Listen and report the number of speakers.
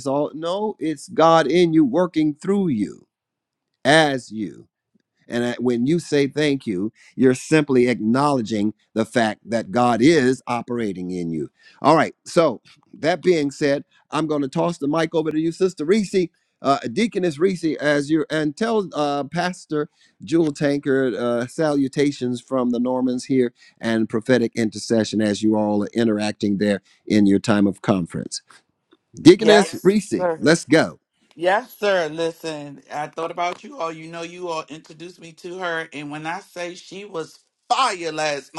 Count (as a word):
two